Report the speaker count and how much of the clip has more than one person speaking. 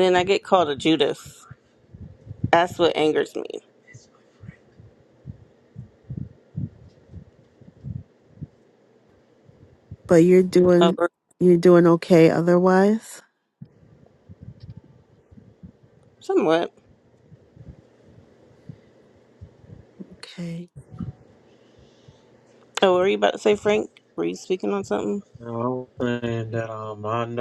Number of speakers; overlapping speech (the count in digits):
3, about 1%